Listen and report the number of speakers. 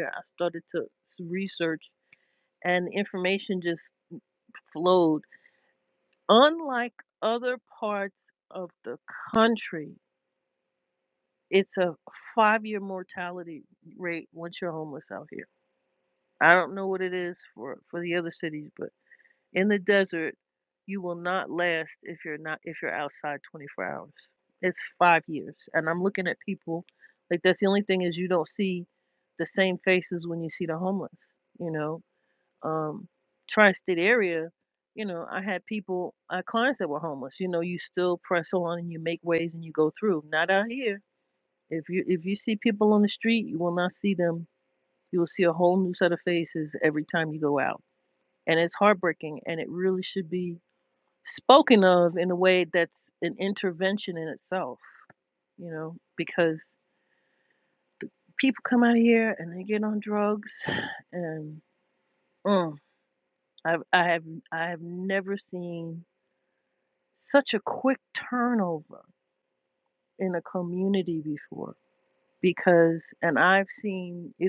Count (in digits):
1